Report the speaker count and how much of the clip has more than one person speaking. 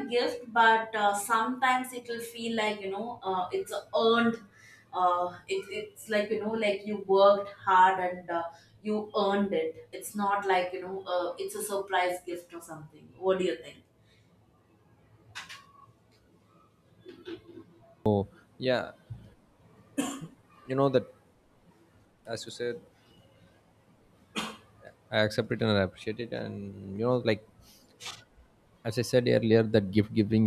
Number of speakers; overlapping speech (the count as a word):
two, no overlap